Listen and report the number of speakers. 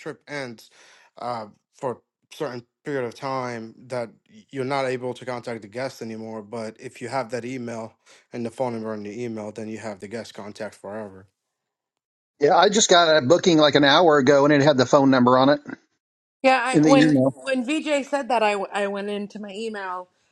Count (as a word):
three